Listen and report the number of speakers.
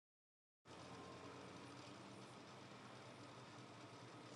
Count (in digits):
0